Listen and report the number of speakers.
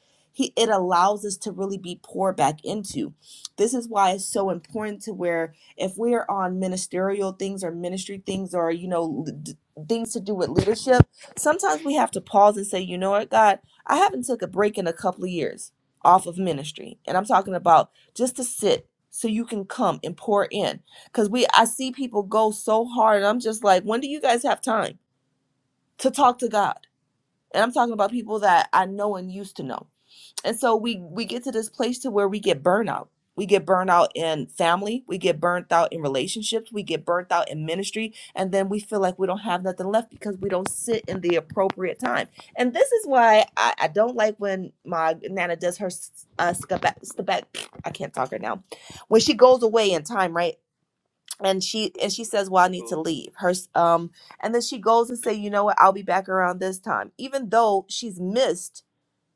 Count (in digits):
1